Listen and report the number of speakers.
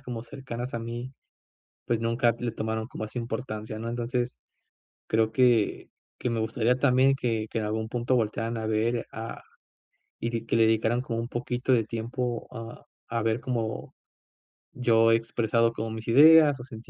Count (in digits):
1